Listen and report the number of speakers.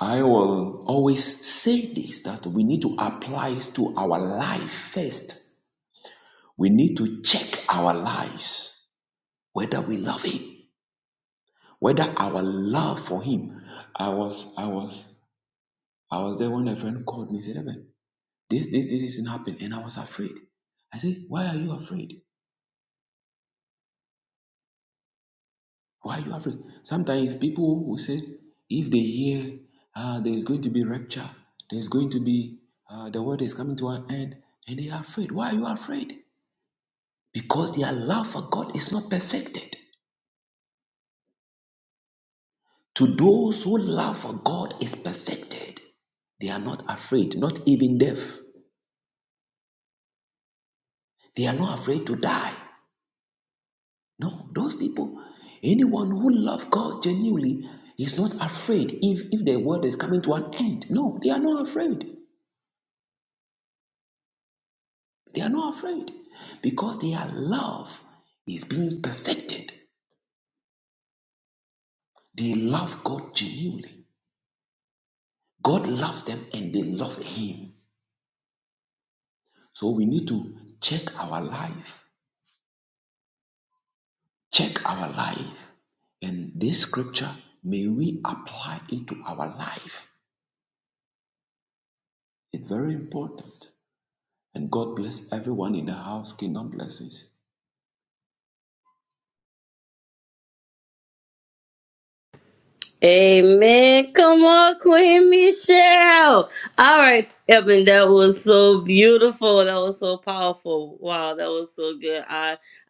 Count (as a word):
two